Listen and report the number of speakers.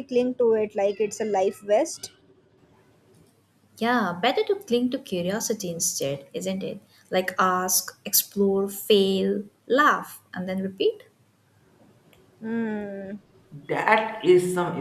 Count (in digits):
3